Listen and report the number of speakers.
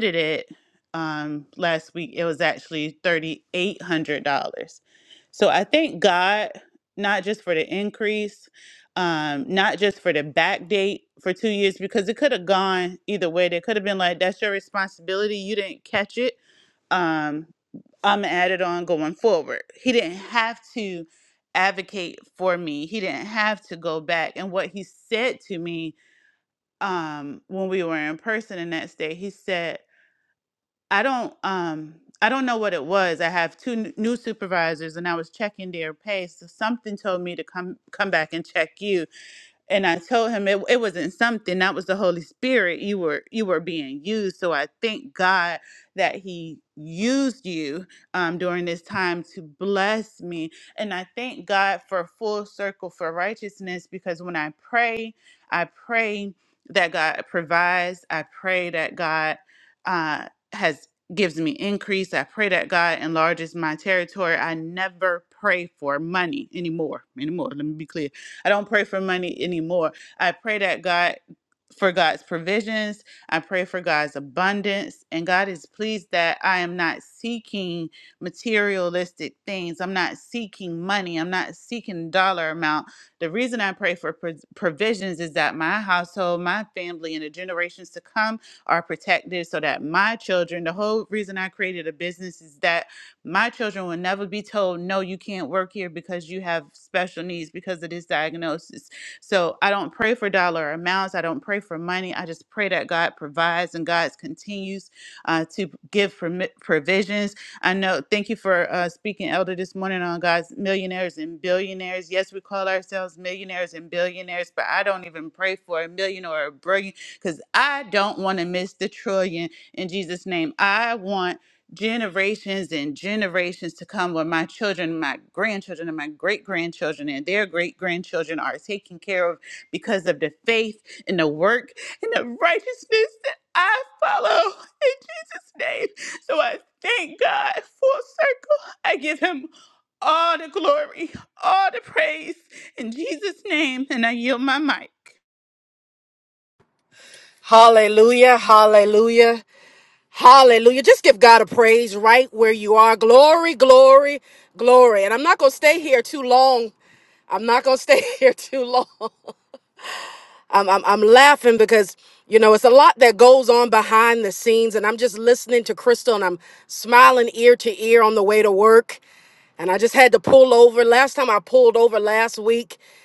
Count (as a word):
two